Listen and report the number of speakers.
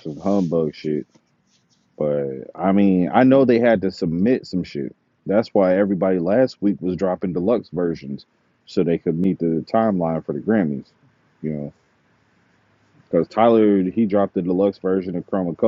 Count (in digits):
1